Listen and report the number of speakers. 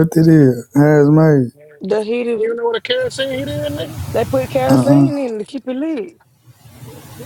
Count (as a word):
three